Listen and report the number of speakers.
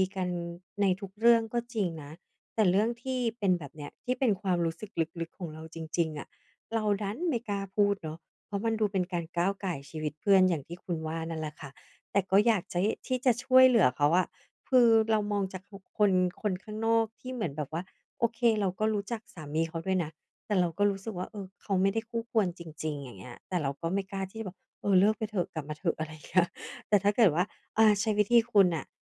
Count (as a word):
one